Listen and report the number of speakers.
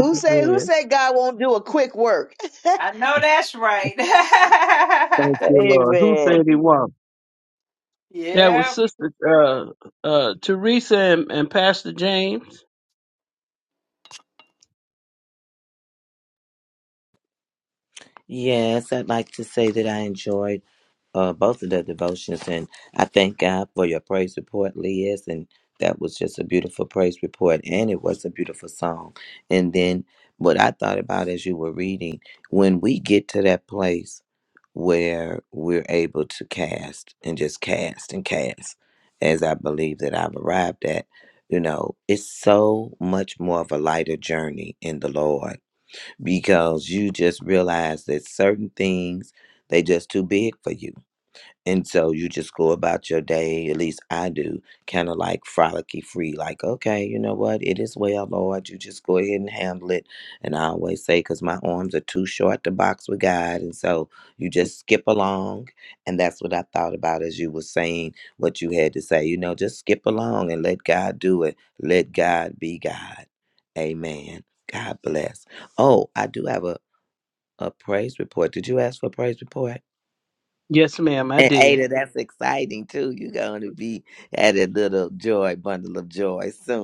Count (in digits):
4